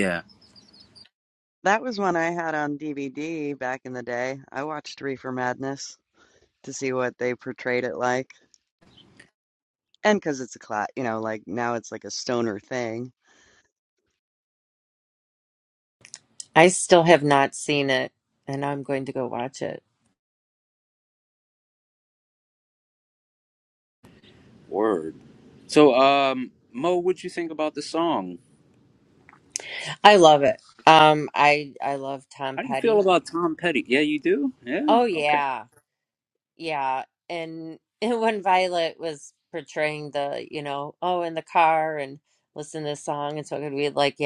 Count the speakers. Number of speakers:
three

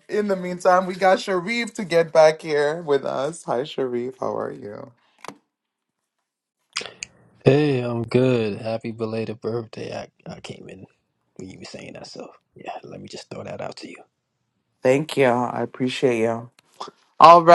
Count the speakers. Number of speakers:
two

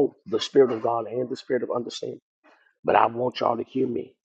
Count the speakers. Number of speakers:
one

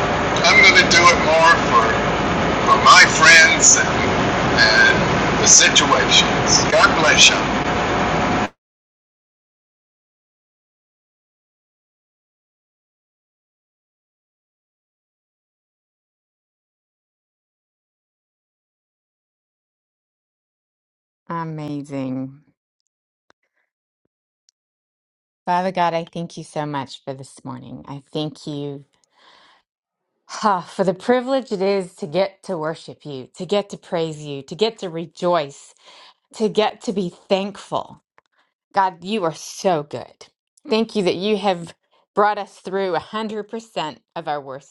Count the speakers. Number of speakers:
two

